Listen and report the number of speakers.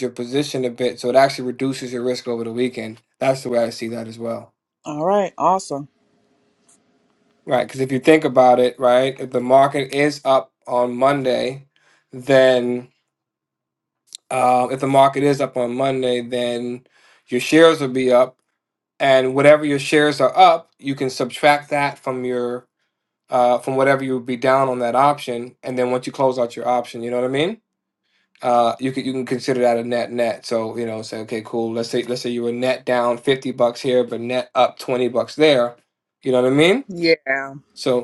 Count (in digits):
2